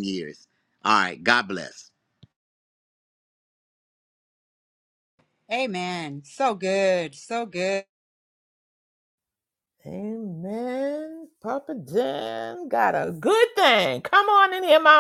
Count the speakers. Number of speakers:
three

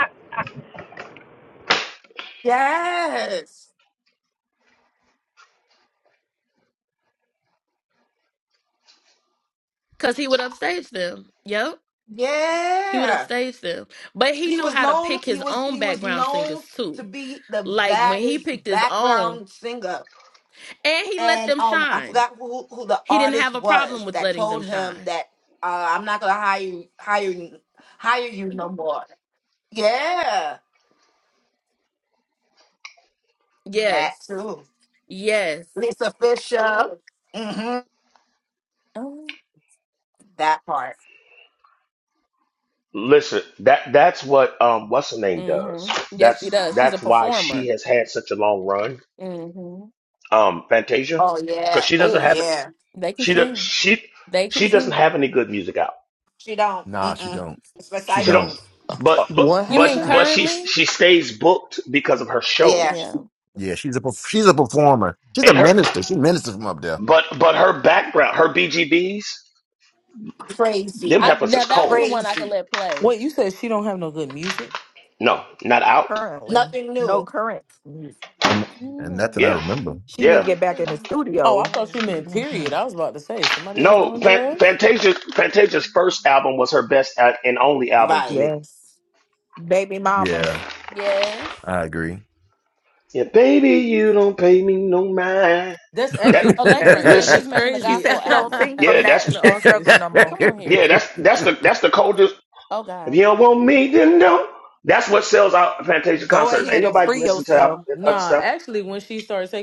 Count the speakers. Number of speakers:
six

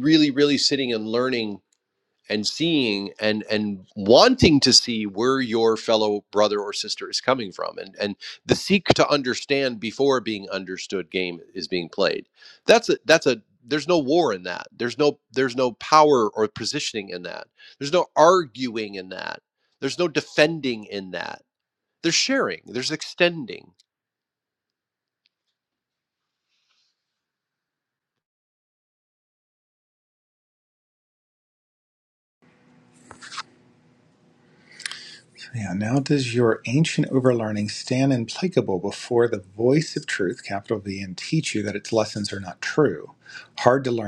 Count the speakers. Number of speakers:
two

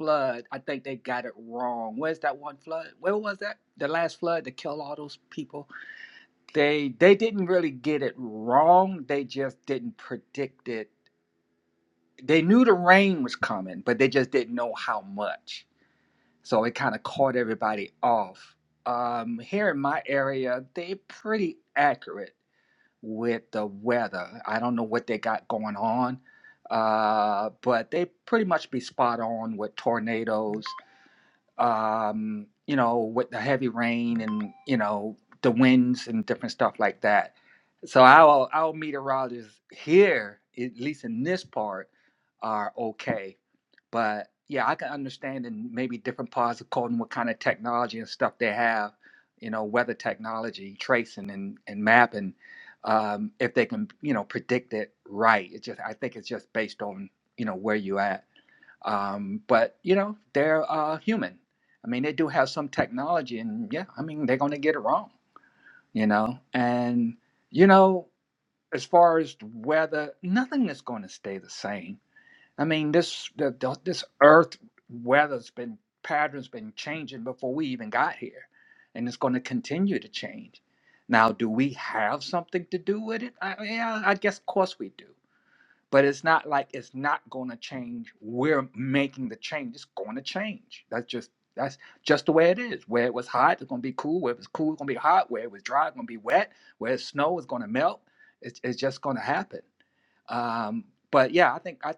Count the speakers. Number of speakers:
one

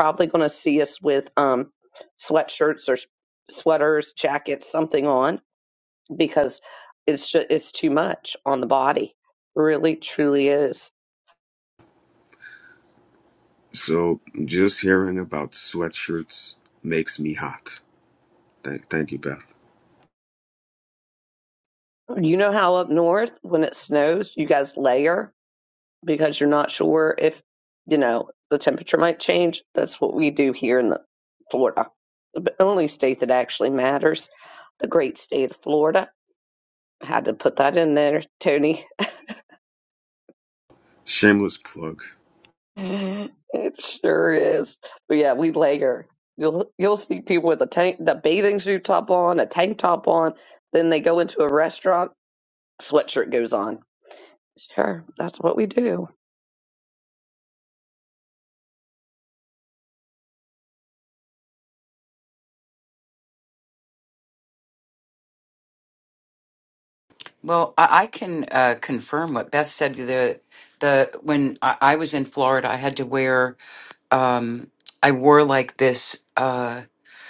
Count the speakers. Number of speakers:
three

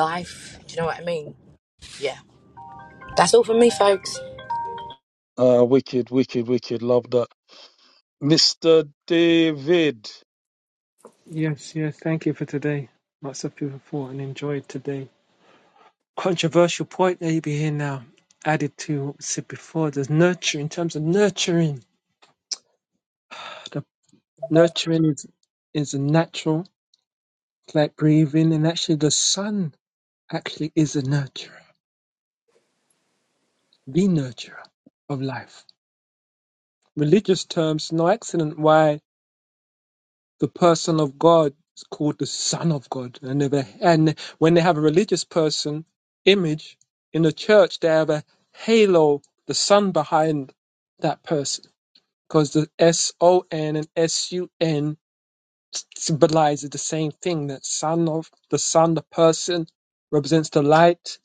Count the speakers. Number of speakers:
three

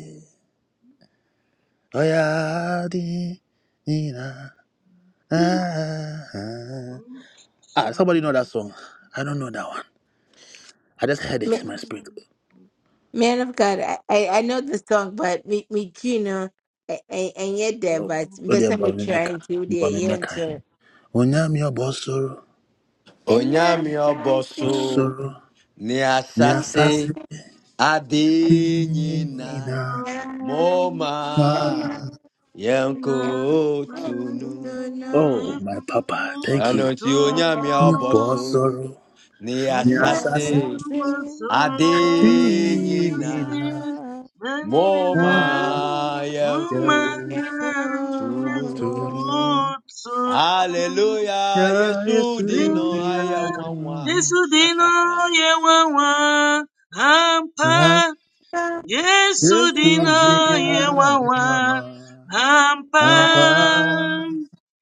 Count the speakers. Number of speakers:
five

